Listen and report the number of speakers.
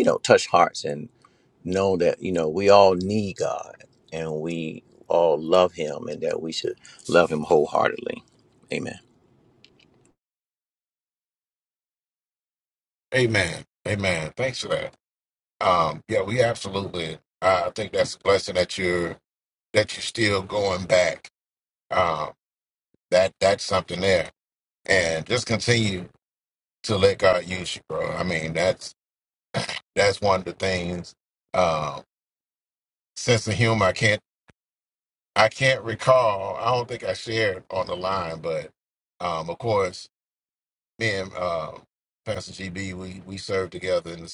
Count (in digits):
2